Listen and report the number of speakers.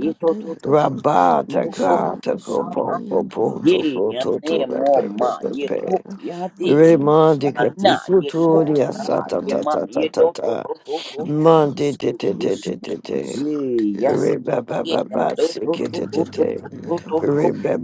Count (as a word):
three